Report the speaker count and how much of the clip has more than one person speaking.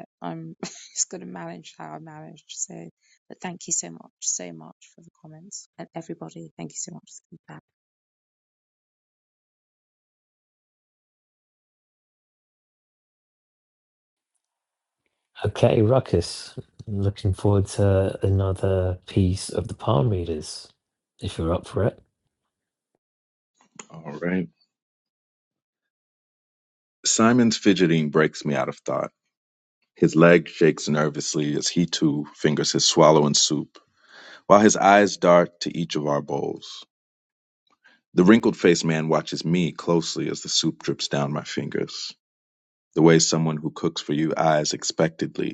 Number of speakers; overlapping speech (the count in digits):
3, no overlap